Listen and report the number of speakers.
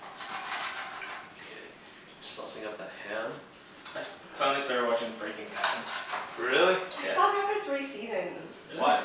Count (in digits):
3